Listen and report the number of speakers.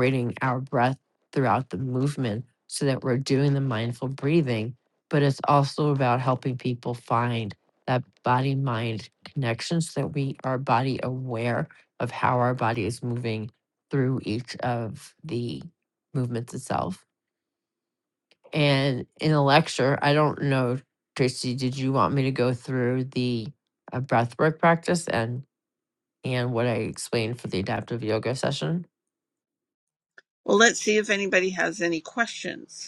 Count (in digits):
2